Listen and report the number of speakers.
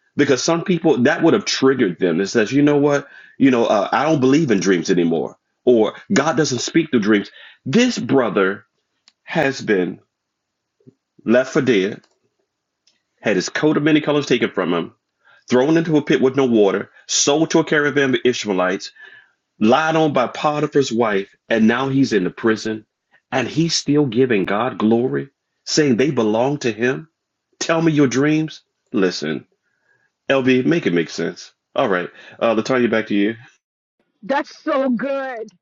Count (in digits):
2